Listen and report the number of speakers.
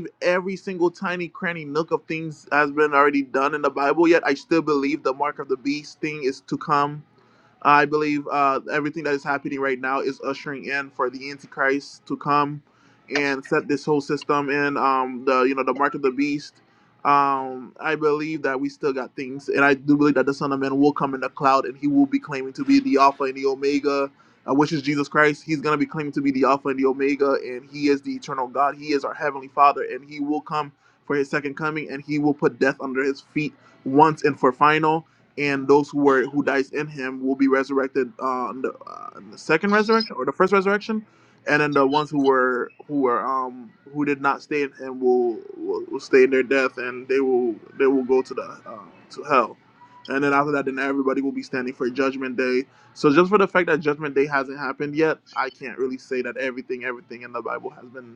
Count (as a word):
one